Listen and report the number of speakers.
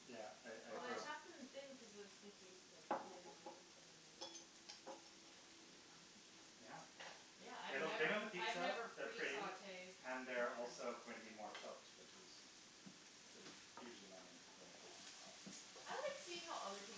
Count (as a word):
three